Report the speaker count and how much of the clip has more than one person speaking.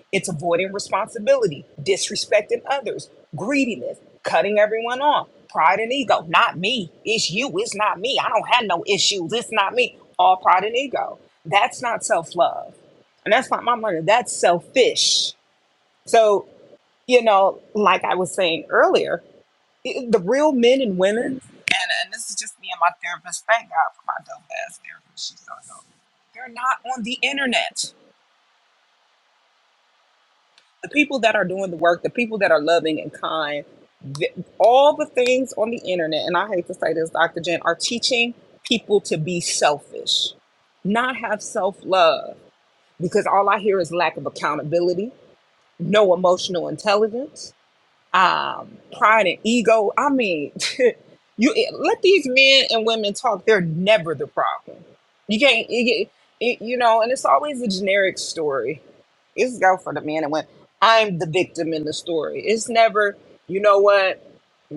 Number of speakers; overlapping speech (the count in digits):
1, no overlap